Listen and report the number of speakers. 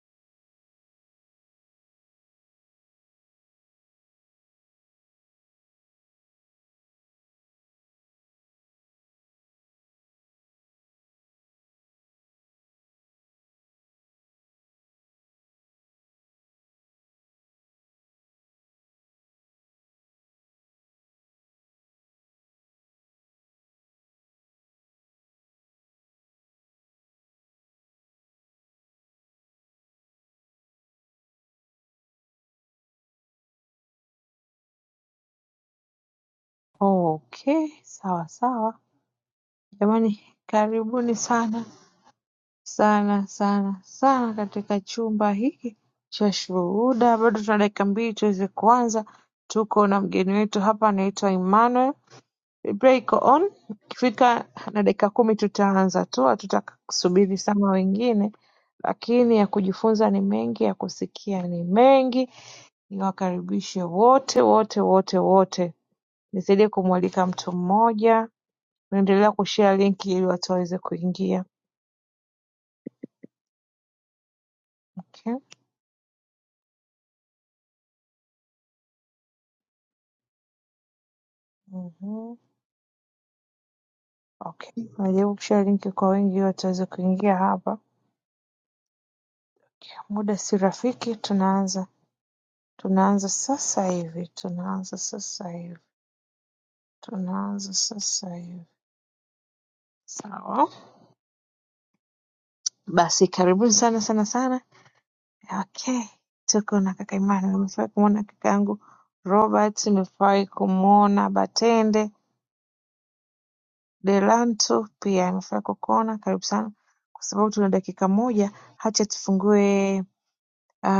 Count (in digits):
1